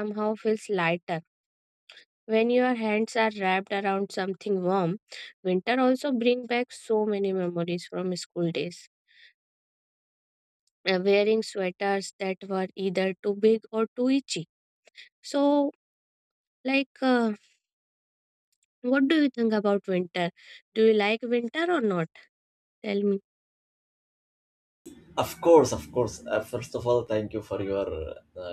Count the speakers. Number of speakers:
two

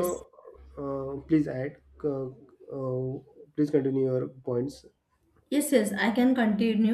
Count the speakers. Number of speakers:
two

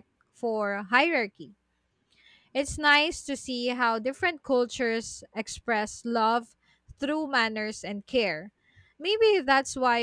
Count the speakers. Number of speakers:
one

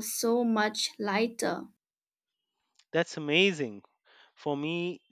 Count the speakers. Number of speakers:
two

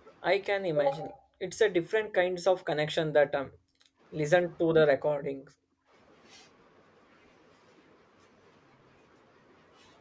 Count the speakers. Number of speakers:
one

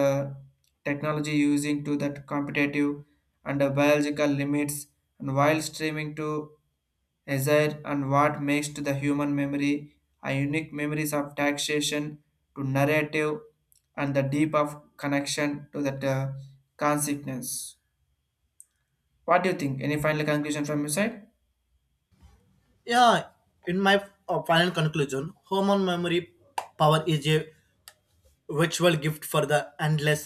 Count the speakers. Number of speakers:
two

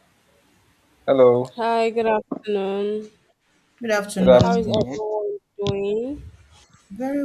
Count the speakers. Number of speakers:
three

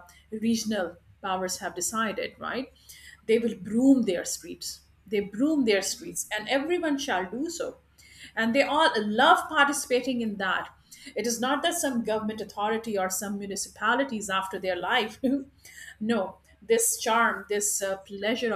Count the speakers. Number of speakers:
one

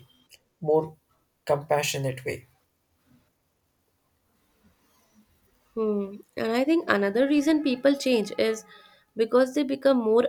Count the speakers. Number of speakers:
two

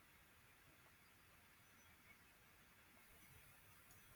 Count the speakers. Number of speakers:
zero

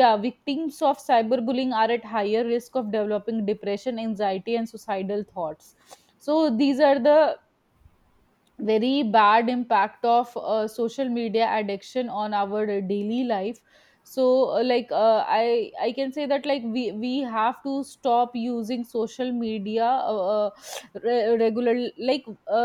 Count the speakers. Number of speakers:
one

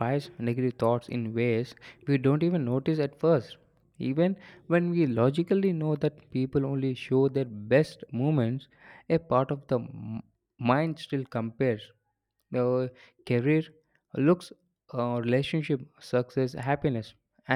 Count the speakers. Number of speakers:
one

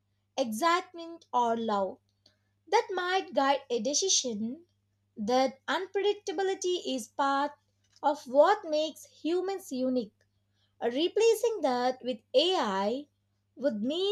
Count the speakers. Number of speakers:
one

